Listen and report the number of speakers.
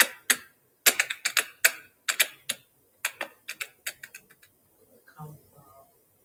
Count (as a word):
zero